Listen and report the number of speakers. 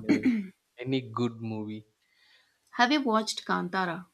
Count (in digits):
2